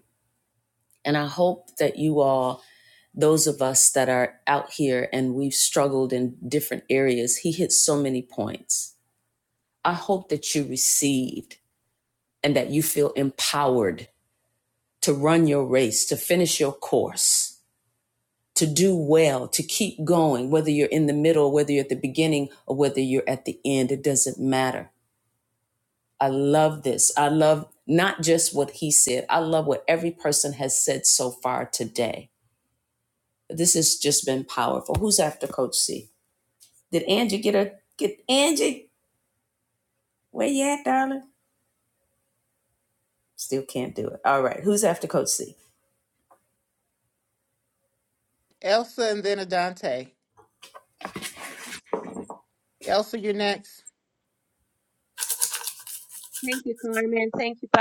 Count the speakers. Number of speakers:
3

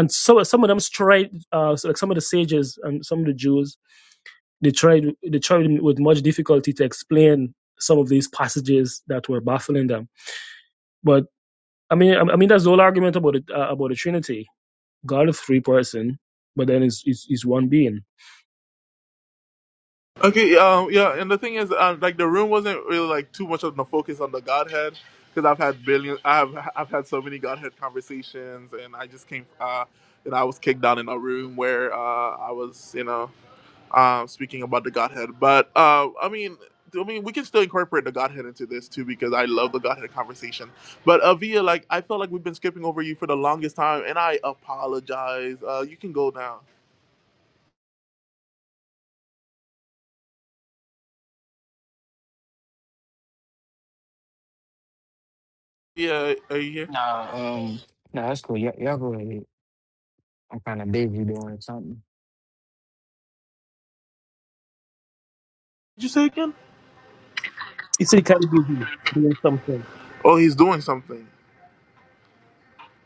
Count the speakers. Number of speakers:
3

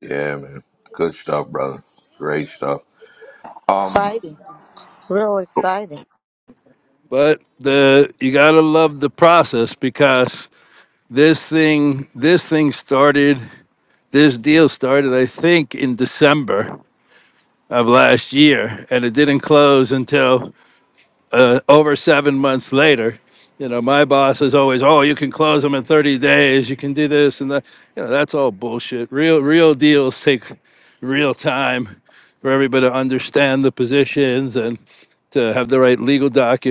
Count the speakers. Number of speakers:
3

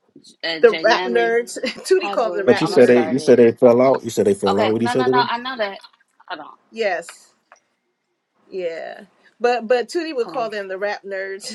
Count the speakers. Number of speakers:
3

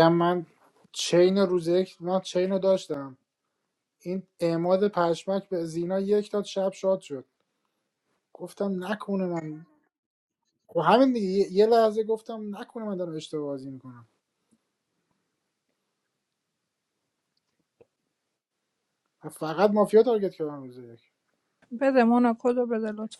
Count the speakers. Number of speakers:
2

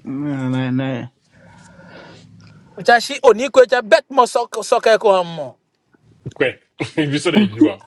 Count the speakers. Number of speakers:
3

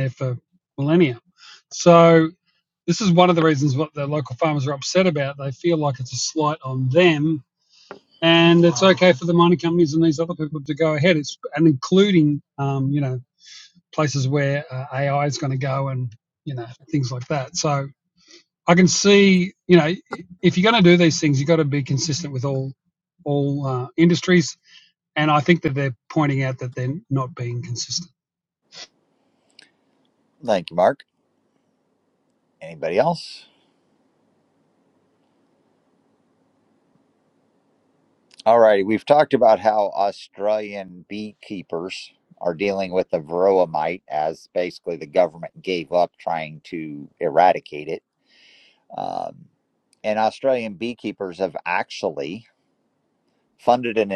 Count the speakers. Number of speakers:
2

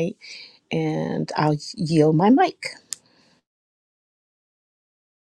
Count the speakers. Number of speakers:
1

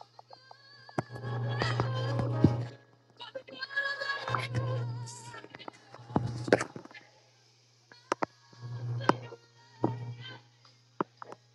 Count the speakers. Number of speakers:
0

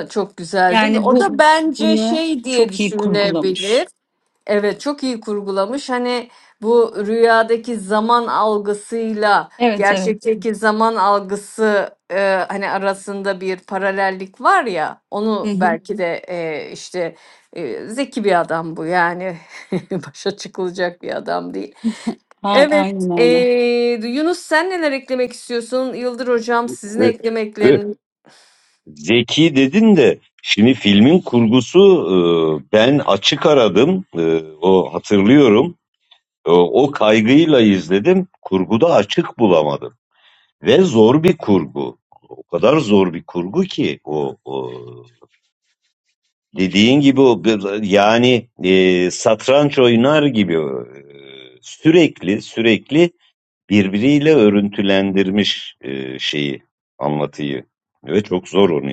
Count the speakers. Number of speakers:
3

